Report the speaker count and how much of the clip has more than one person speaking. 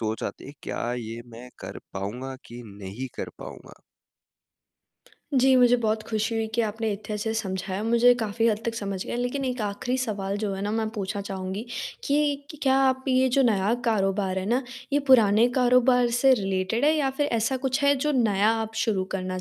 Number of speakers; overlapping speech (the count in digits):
2, no overlap